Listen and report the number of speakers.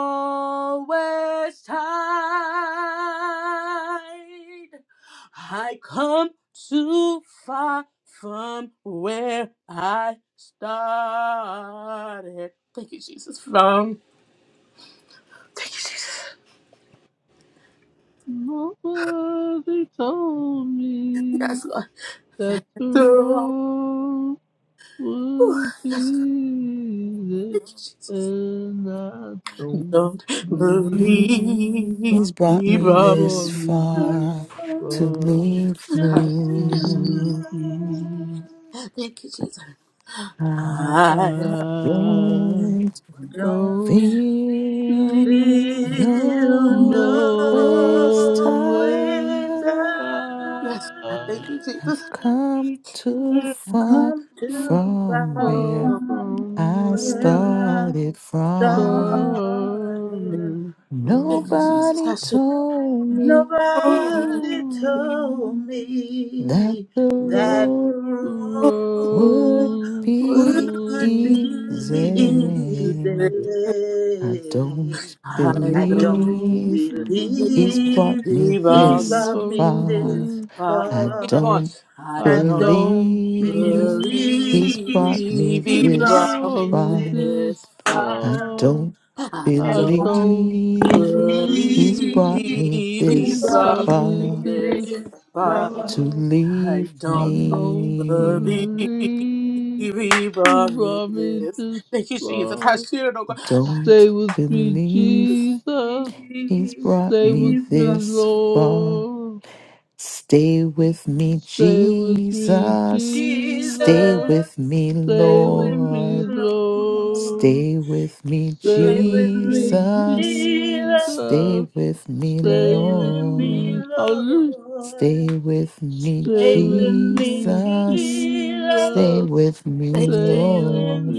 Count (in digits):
4